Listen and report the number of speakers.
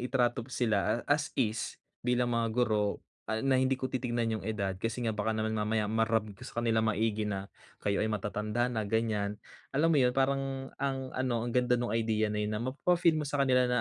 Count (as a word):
one